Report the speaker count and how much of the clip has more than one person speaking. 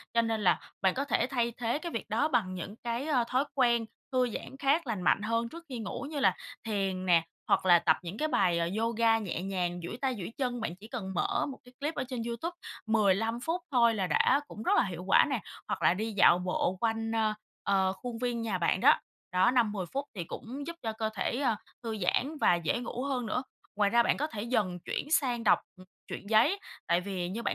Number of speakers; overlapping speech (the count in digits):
1, no overlap